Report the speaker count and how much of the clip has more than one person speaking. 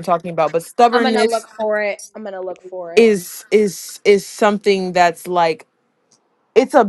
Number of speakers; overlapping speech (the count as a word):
two, about 7%